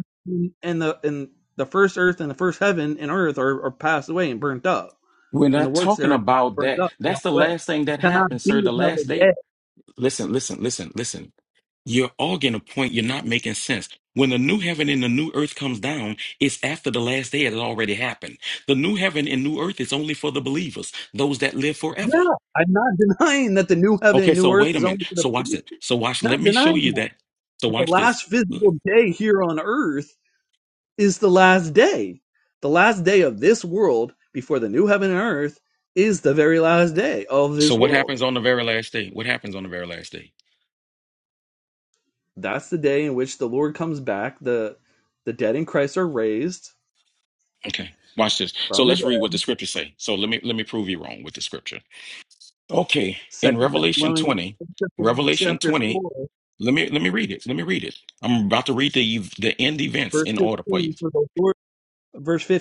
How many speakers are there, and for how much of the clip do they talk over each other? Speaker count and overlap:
2, about 15%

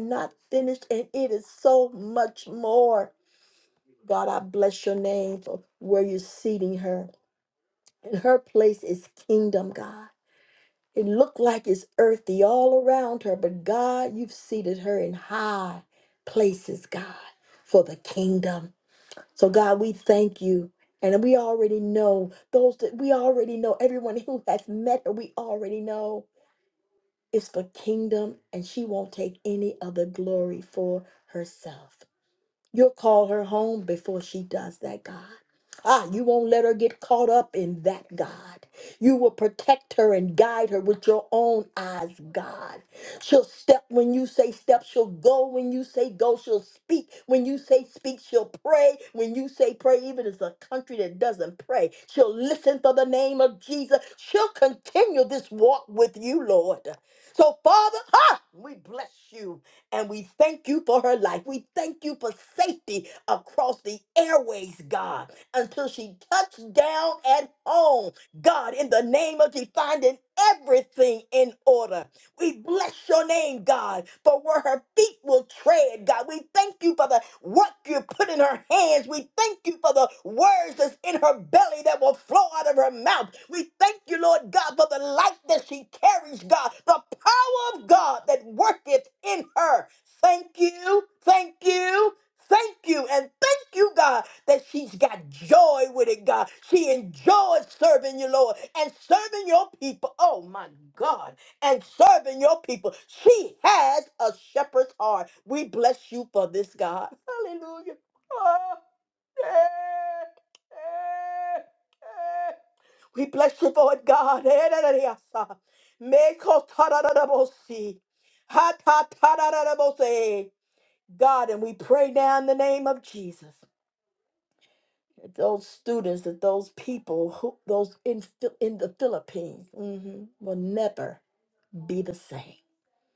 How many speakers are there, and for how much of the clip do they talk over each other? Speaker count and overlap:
1, no overlap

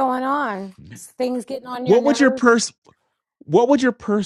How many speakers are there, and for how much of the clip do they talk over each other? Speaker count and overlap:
2, about 13%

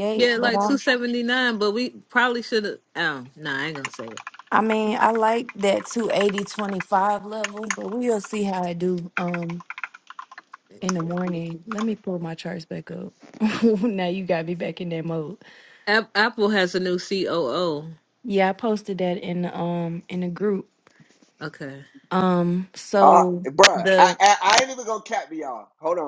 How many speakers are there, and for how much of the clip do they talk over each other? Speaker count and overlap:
3, about 7%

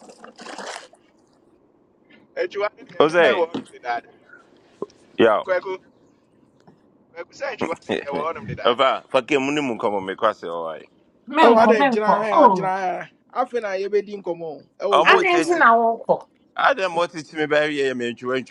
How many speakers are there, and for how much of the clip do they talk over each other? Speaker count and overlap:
4, about 12%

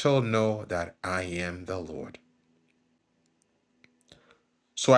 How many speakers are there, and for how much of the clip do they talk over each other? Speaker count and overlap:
1, no overlap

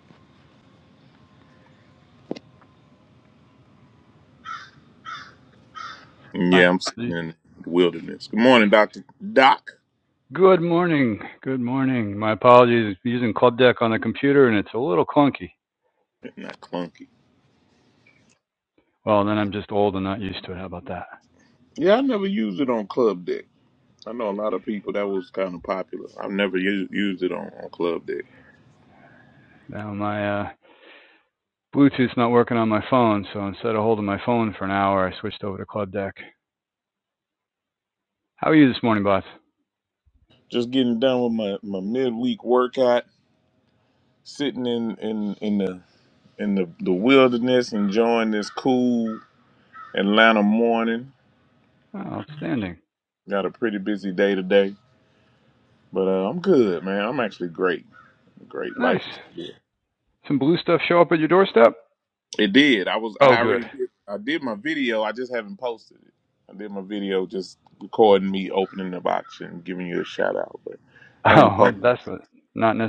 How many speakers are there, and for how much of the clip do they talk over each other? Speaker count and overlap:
2, about 2%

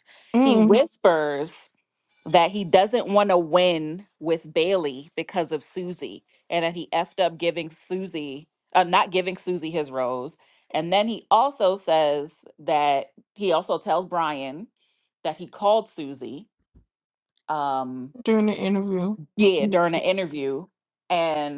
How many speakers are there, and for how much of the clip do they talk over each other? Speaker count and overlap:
2, about 2%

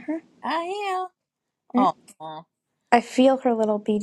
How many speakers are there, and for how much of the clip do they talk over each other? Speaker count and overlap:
2, about 3%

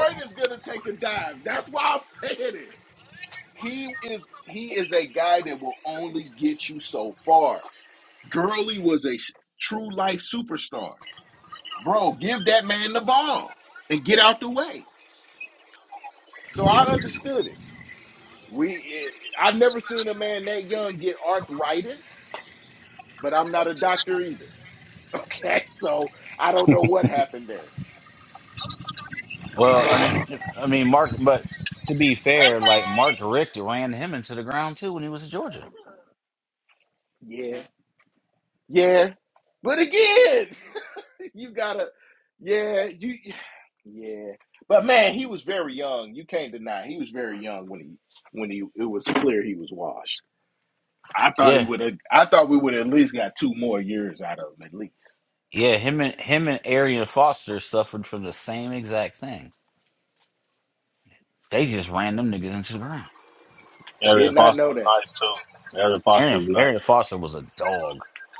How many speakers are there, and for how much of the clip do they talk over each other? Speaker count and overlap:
3, about 3%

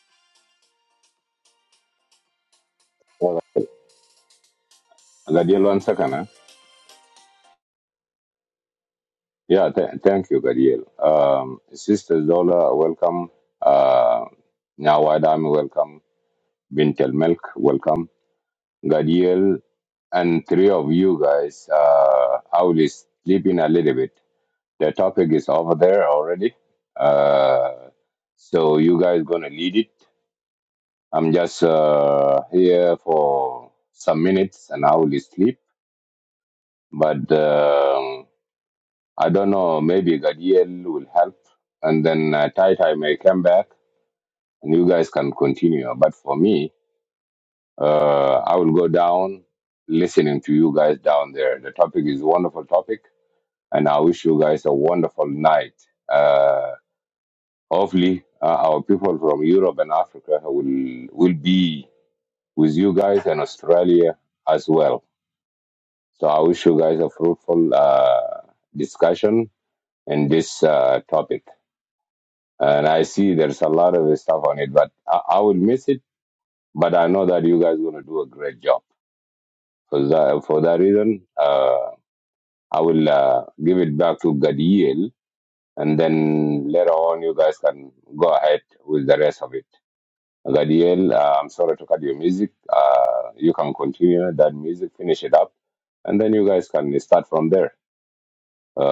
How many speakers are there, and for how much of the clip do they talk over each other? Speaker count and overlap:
1, no overlap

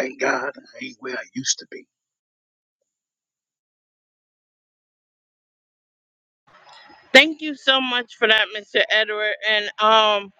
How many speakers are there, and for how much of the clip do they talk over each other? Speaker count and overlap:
2, no overlap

